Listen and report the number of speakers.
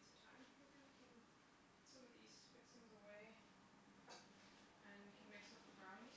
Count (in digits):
1